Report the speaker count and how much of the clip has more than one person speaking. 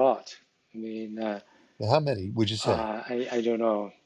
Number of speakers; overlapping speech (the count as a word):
two, about 6%